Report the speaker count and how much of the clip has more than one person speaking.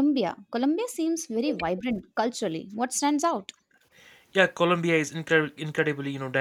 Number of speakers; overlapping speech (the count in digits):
2, no overlap